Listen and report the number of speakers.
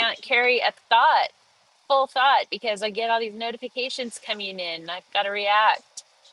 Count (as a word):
one